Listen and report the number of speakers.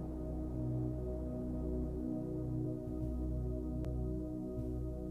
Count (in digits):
0